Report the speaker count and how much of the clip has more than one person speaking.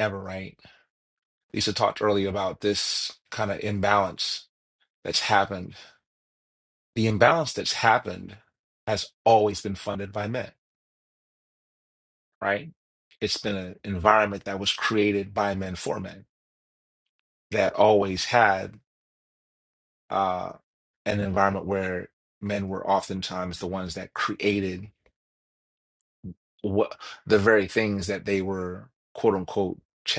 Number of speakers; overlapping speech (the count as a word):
one, no overlap